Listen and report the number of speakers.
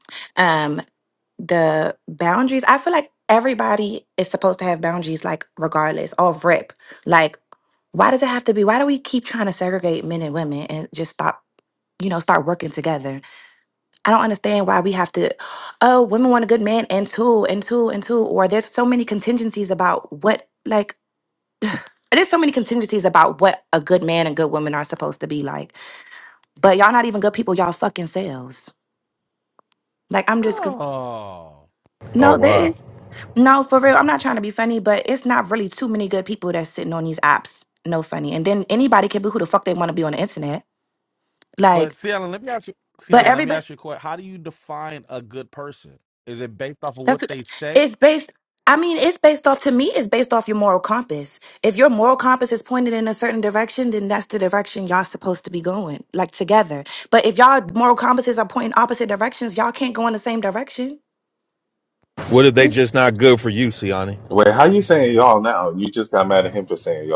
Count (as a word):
four